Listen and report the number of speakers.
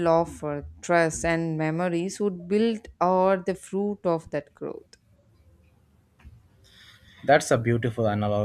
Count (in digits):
2